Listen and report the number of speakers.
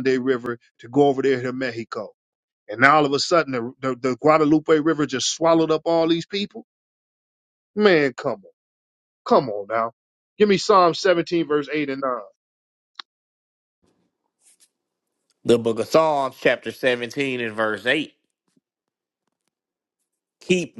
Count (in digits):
2